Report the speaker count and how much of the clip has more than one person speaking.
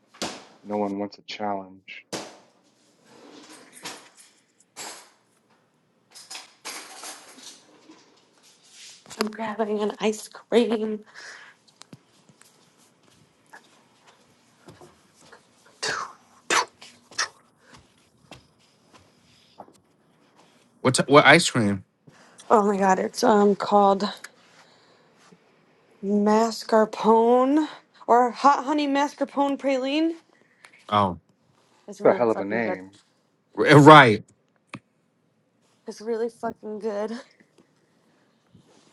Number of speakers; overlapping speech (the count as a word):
three, about 2%